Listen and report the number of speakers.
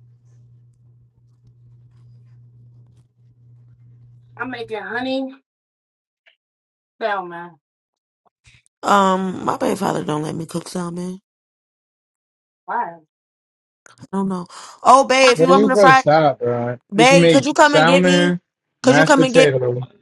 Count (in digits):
3